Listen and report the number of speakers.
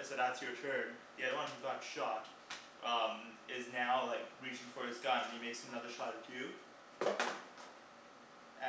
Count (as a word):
one